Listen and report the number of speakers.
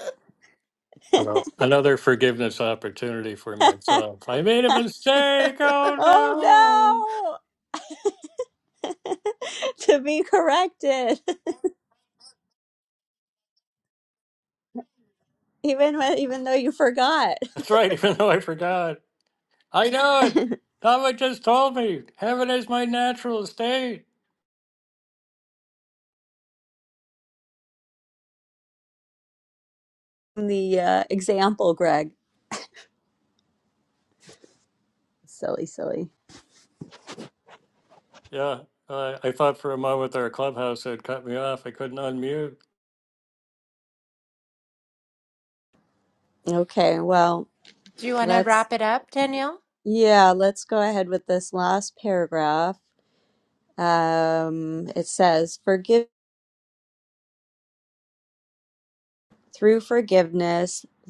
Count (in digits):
3